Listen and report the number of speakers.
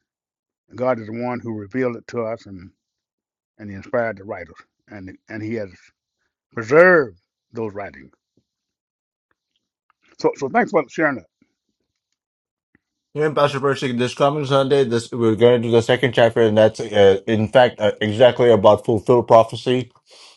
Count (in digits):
2